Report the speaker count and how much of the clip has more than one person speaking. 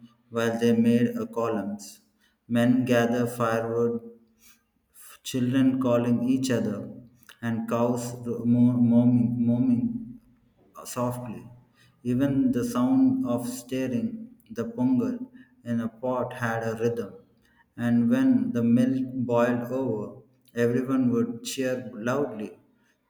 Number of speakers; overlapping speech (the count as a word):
one, no overlap